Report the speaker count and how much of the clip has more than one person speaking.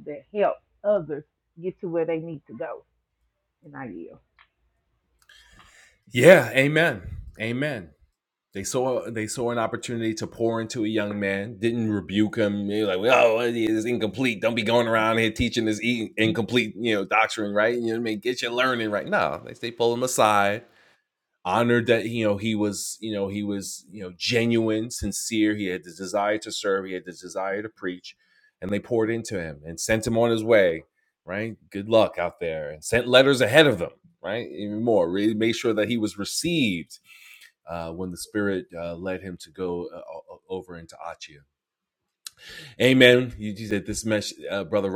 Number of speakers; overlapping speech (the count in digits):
2, no overlap